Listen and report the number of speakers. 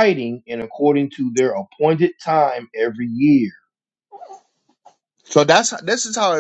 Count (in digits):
2